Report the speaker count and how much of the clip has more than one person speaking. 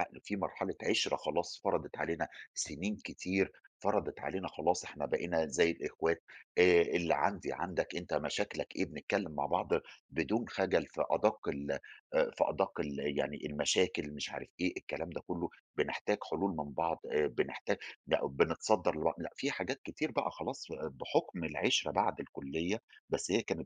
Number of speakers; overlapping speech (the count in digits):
1, no overlap